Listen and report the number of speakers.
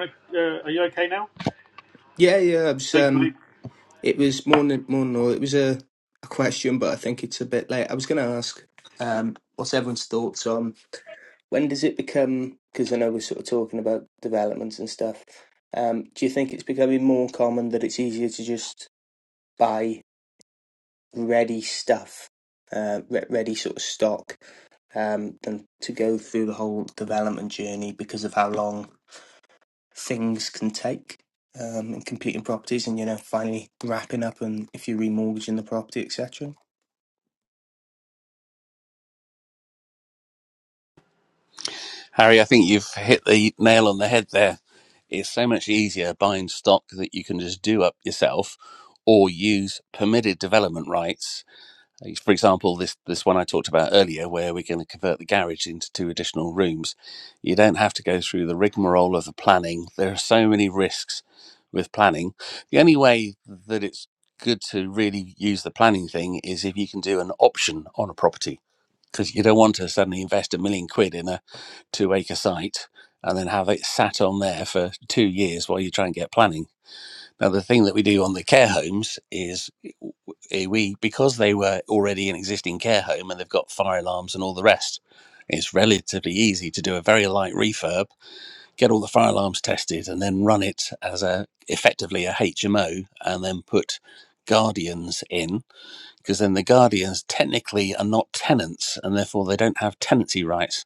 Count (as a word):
three